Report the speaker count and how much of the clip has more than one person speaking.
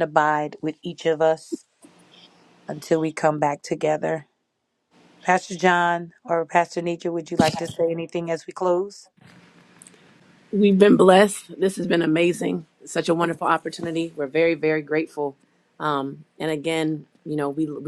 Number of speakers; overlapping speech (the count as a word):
two, about 1%